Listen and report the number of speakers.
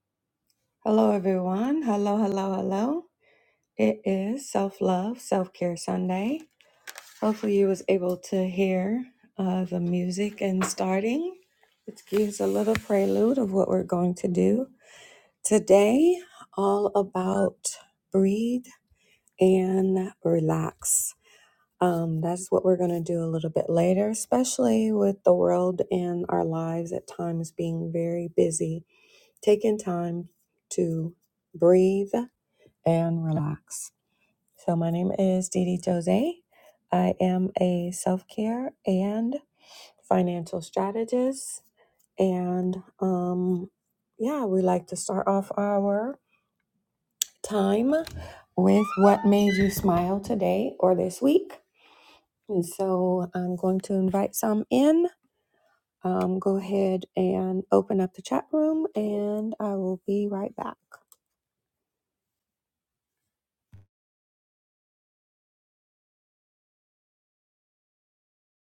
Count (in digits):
1